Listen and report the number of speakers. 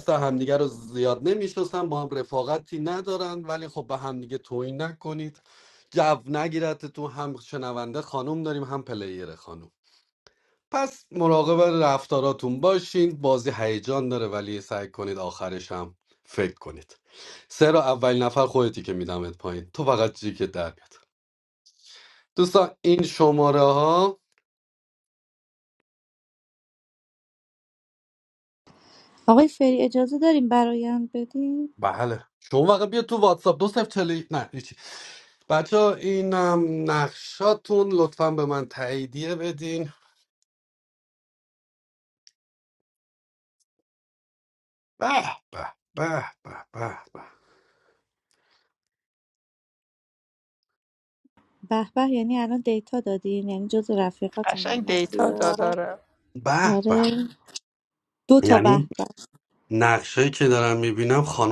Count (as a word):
three